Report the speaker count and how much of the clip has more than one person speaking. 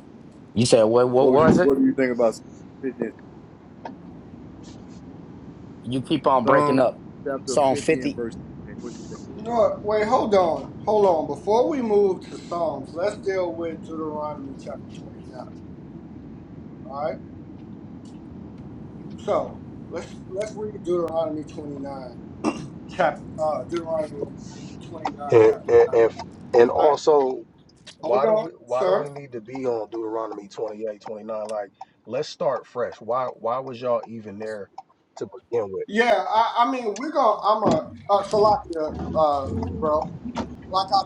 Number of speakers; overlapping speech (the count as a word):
four, about 8%